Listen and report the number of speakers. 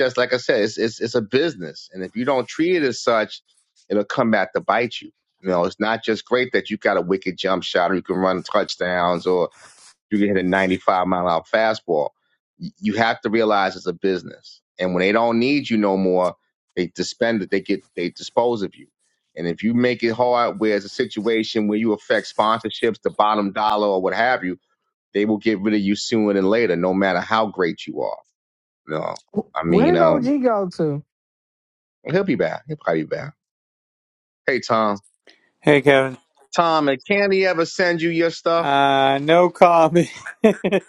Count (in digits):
3